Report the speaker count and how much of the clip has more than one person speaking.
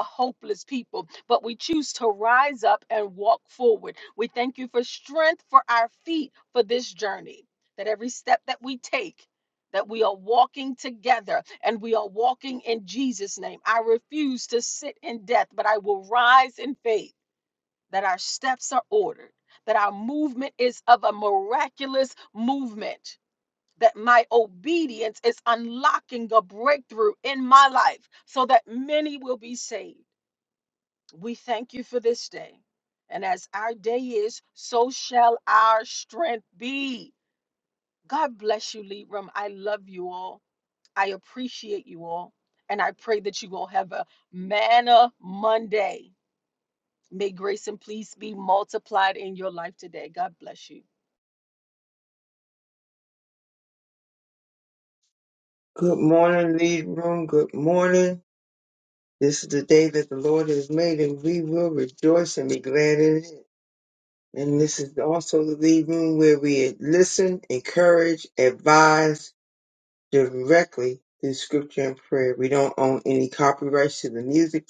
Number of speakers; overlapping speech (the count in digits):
2, no overlap